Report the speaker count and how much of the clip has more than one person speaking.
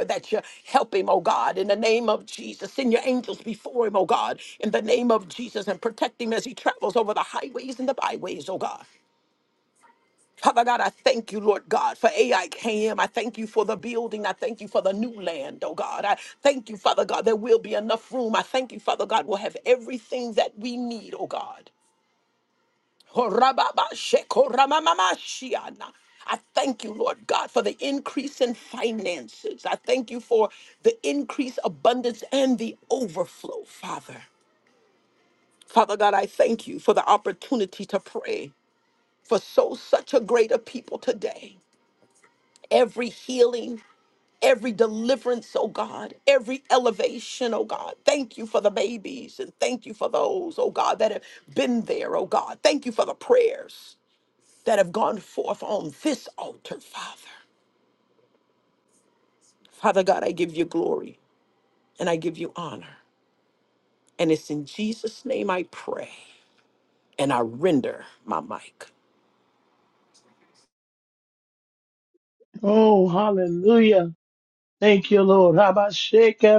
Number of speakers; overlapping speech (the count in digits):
2, no overlap